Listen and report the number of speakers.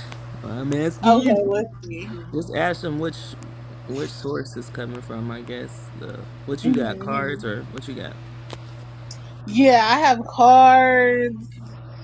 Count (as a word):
two